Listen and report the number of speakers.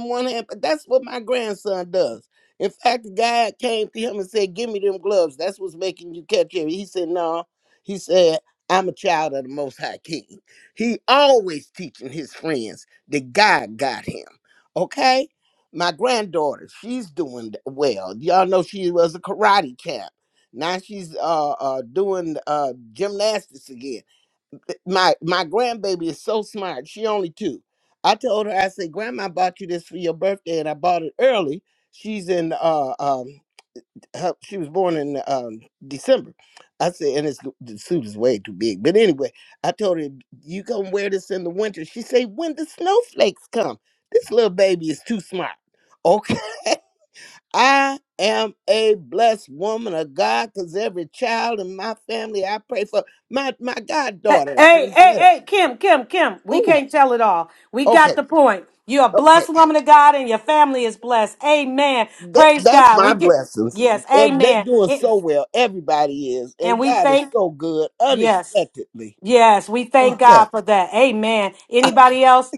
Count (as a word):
two